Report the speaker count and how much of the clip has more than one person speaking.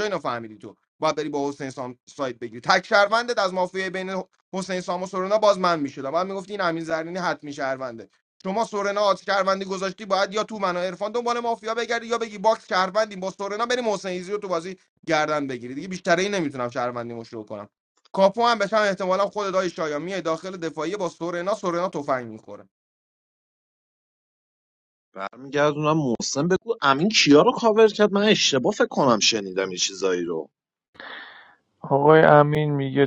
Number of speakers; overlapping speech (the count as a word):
three, no overlap